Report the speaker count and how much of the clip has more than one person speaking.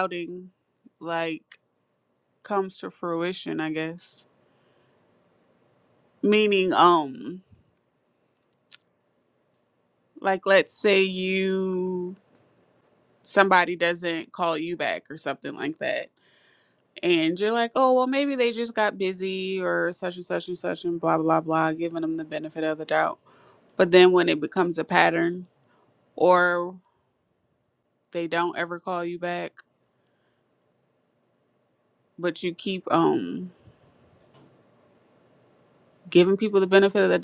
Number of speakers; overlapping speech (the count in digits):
1, no overlap